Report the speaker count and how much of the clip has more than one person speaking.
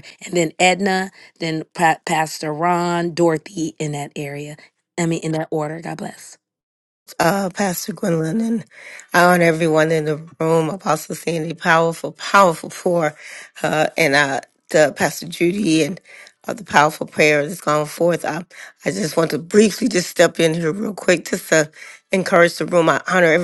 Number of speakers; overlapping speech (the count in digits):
2, no overlap